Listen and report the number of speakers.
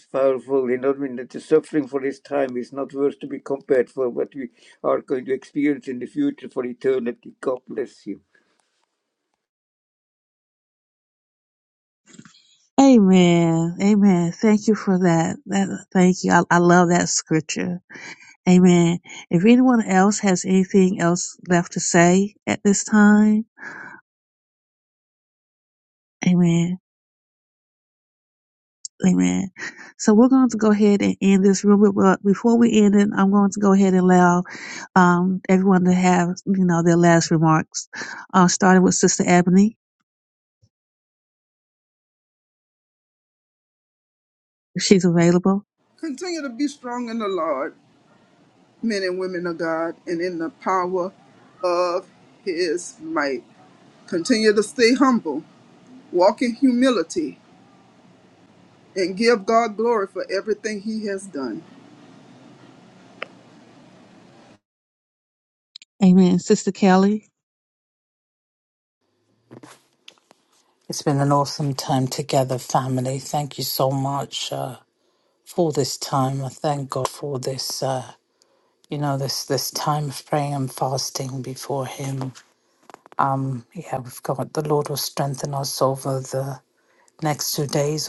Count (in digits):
4